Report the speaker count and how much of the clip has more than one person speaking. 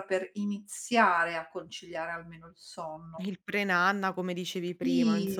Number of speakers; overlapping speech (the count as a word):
two, about 11%